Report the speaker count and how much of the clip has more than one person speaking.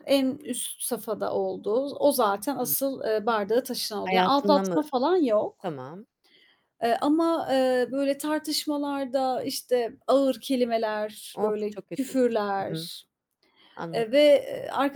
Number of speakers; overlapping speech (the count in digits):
2, about 15%